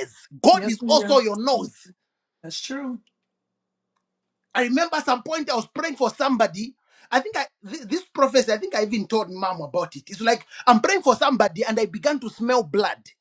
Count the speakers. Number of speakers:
2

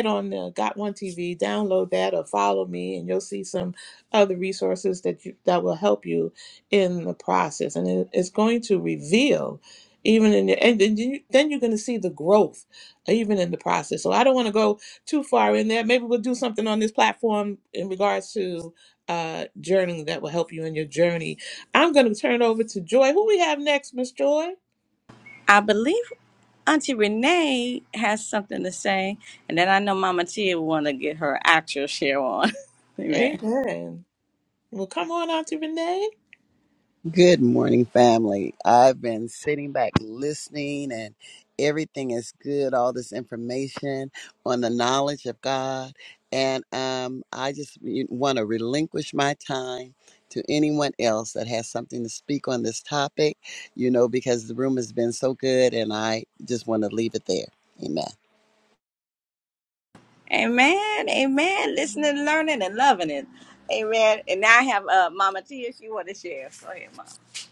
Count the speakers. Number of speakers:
3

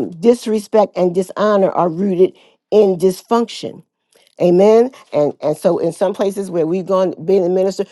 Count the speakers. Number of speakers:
1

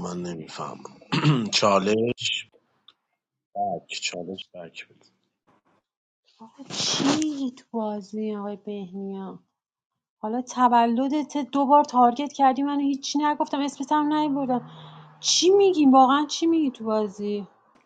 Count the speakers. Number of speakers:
2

